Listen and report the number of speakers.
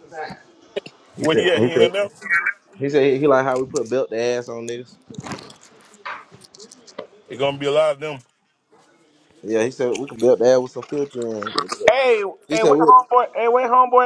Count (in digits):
3